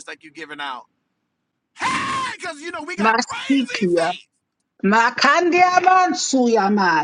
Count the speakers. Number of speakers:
2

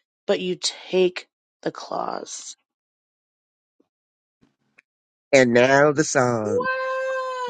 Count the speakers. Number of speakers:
3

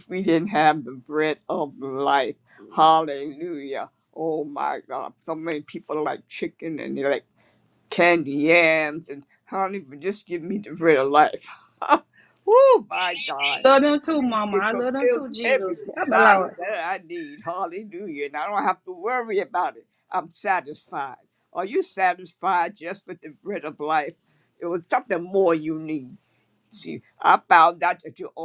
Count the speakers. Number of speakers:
2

